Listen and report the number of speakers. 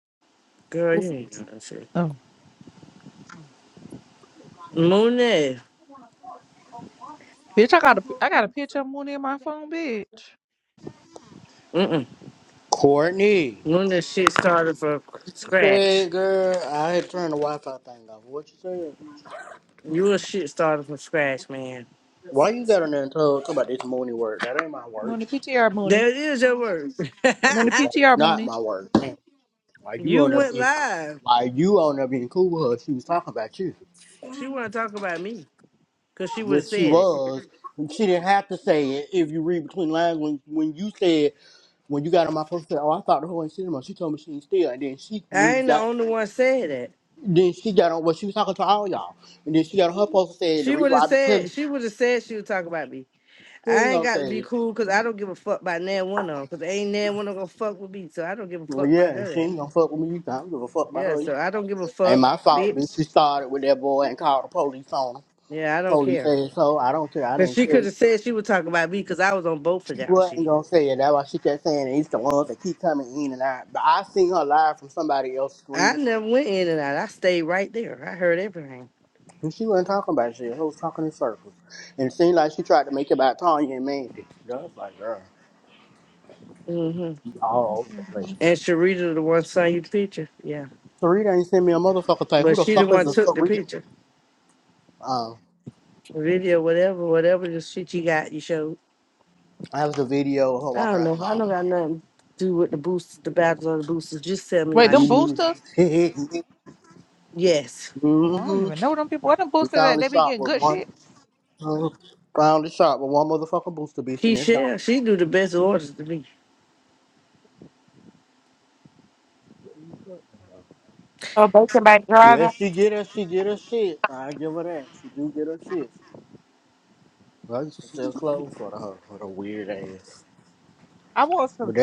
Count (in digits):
4